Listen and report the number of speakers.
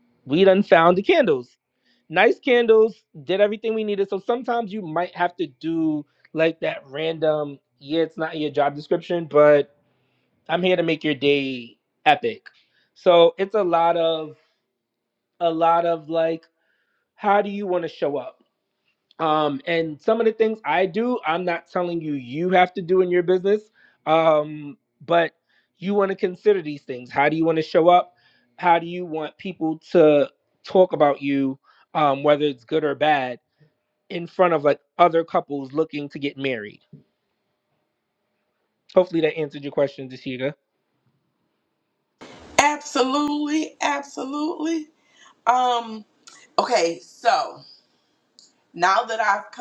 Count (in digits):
2